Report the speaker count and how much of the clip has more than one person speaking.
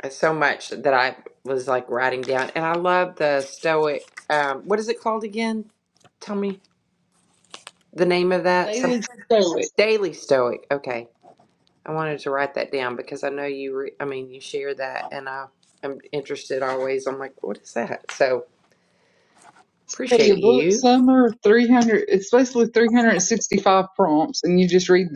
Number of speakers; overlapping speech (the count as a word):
two, about 4%